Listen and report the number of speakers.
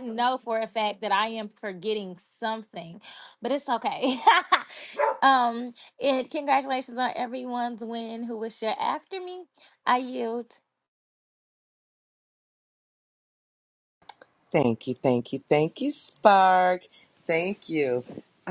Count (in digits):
2